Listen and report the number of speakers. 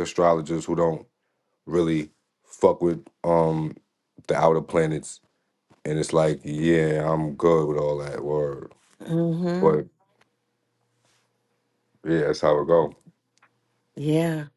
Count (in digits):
2